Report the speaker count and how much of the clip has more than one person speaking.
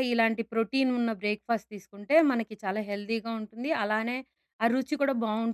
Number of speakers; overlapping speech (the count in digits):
1, no overlap